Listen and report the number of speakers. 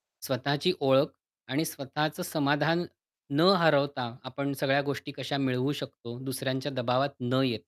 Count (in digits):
1